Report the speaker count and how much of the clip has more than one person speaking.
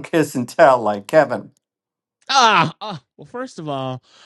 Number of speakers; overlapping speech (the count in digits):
2, no overlap